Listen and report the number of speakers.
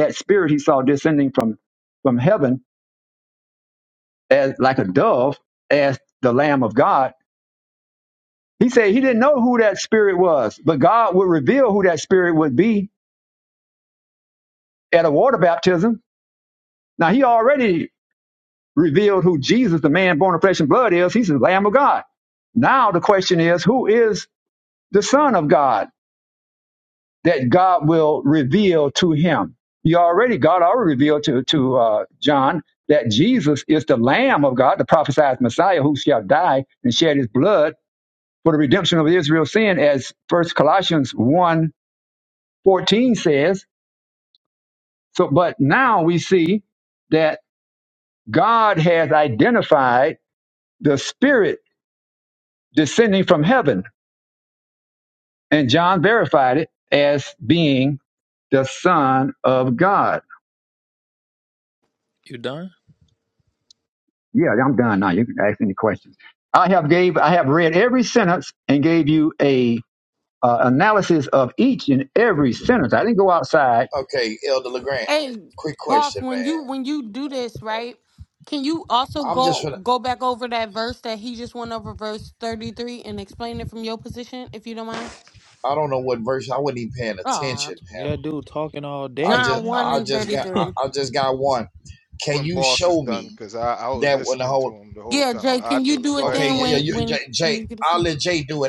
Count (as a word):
five